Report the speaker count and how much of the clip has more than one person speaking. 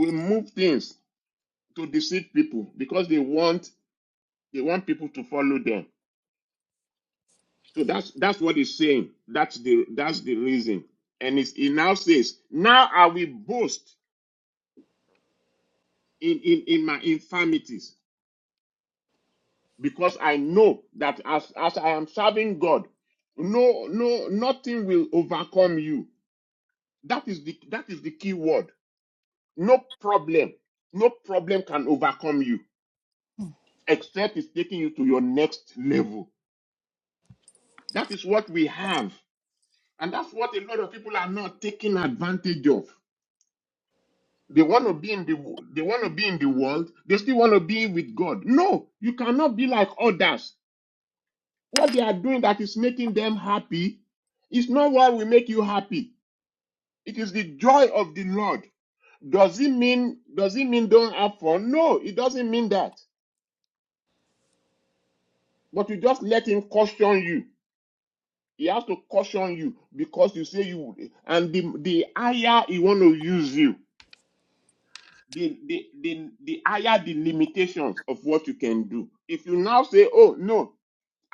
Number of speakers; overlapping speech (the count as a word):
one, no overlap